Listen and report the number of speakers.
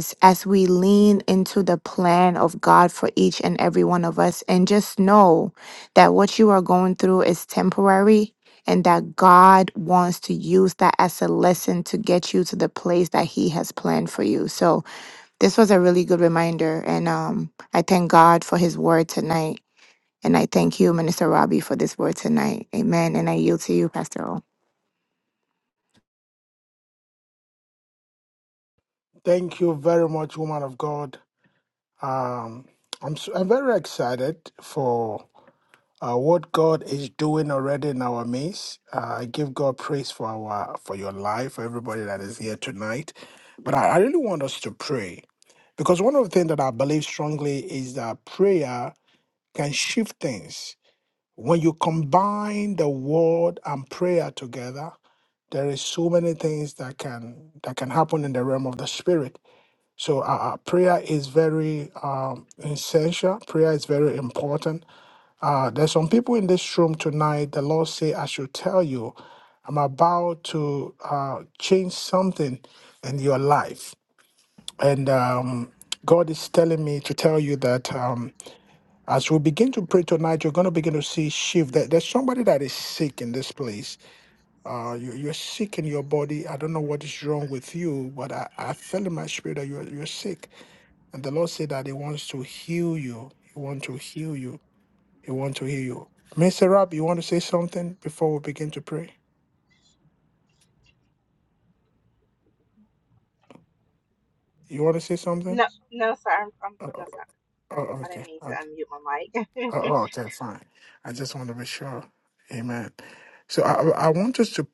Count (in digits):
3